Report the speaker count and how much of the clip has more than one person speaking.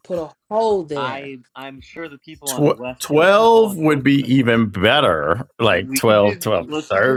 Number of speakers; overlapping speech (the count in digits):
3, about 37%